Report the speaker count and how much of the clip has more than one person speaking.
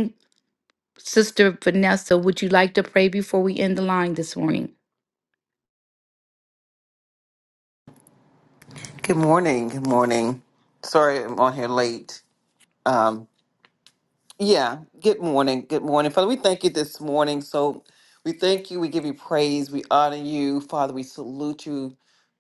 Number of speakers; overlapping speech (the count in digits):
2, no overlap